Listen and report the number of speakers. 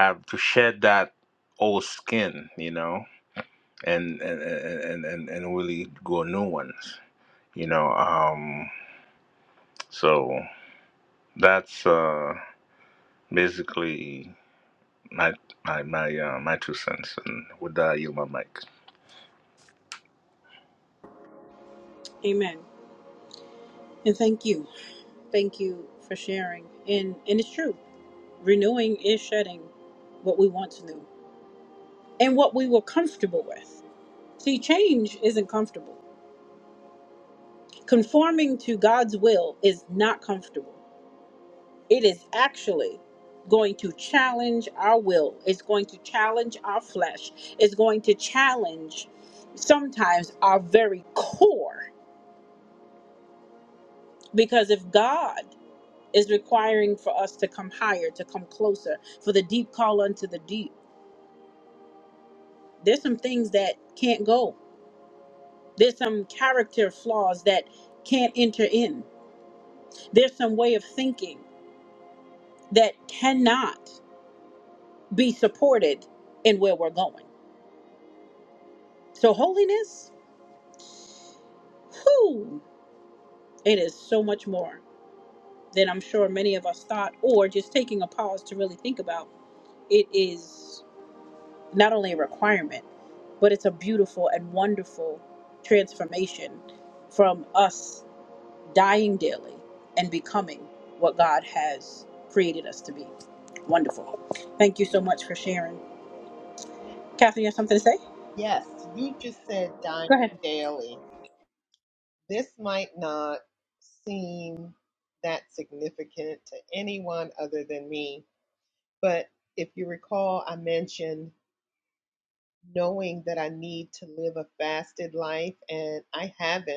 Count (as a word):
three